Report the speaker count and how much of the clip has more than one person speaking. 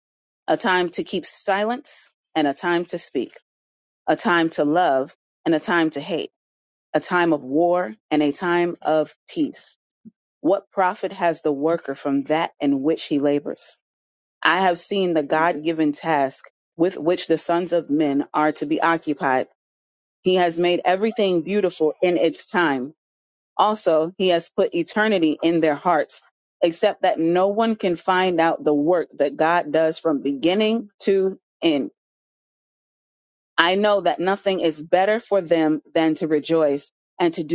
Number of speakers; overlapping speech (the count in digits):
1, no overlap